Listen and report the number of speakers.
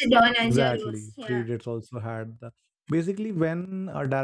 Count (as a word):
two